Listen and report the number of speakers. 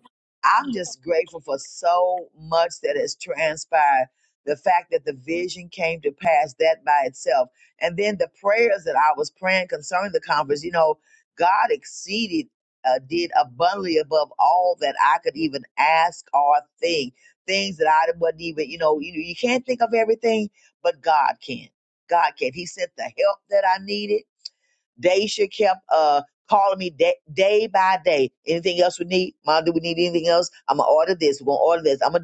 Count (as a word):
one